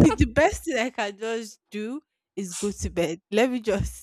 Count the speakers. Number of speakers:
1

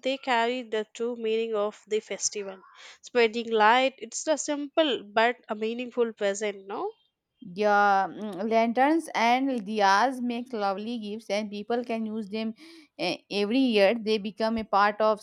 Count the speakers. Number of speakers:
2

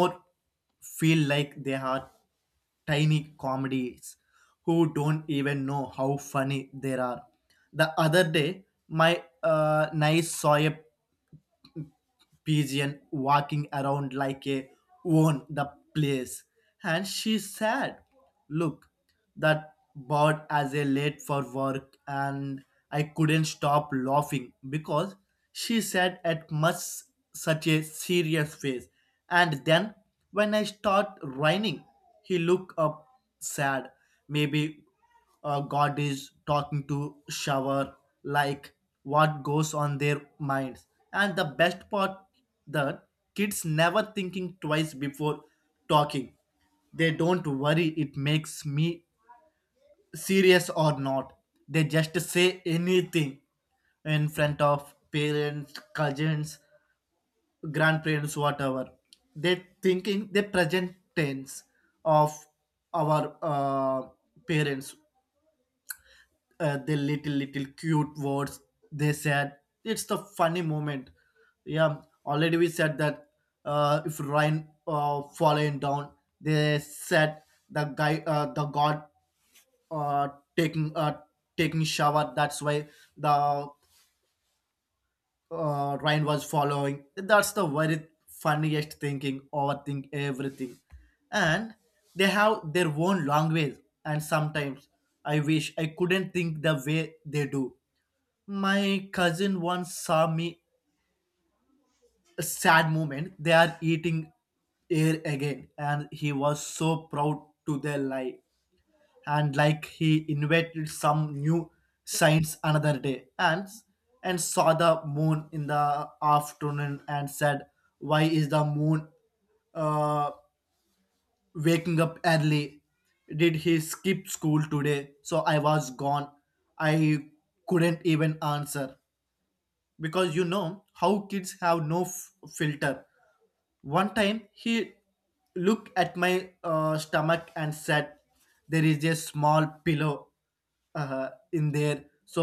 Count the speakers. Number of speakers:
1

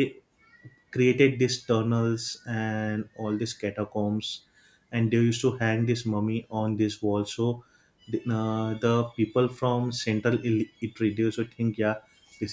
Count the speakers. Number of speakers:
1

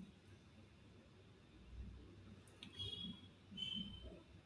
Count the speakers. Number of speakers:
0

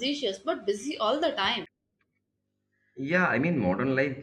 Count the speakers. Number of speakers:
2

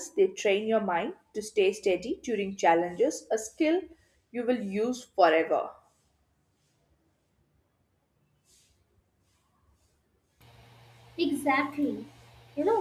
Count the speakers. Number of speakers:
2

